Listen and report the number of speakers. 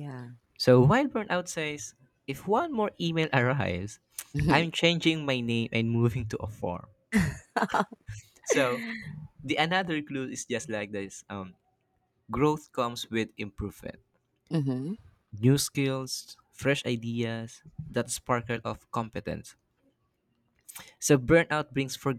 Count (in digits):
2